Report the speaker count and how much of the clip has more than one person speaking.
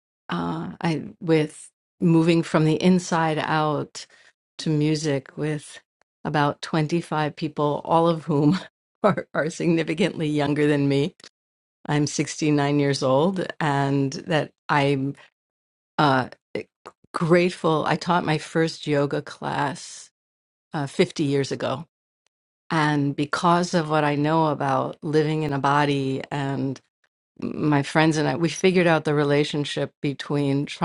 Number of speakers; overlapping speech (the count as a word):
one, no overlap